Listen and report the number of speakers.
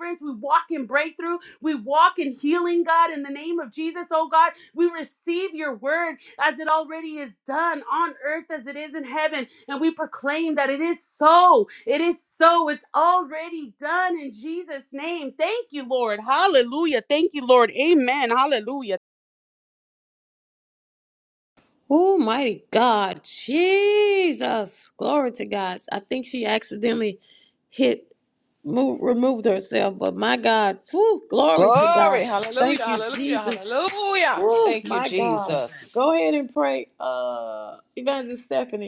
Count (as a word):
three